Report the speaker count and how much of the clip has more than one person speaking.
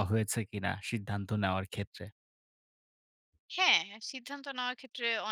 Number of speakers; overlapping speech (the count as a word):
two, no overlap